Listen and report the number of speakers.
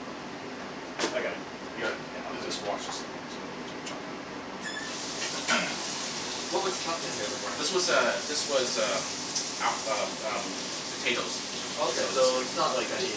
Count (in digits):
2